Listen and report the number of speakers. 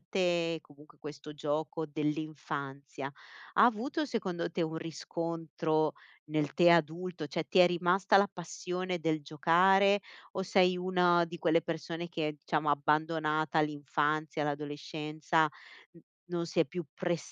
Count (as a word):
one